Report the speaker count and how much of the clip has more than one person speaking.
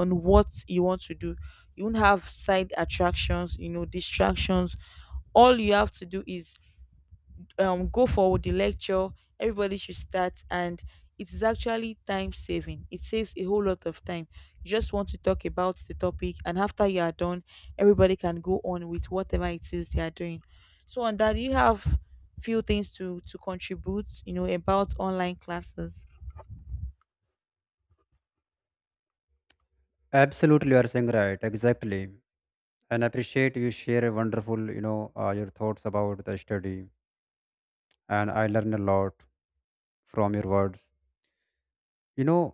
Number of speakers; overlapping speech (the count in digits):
2, no overlap